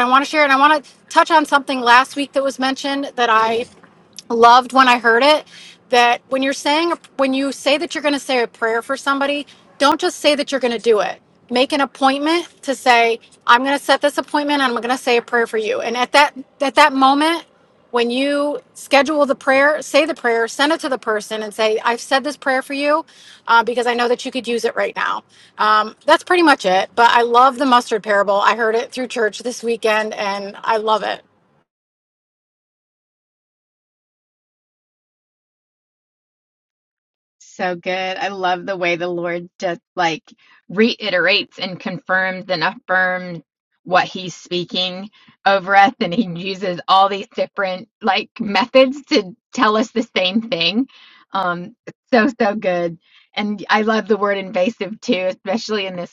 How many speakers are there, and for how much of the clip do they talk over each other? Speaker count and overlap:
2, no overlap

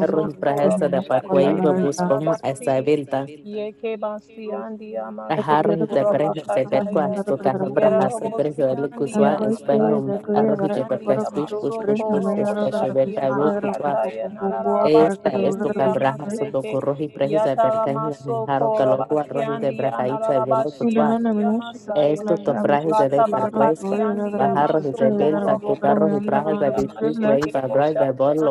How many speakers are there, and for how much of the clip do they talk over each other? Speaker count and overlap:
3, about 83%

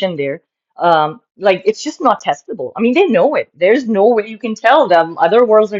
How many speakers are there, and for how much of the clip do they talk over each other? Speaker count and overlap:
1, no overlap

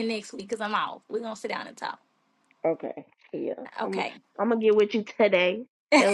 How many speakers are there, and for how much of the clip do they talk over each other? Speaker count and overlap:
2, about 4%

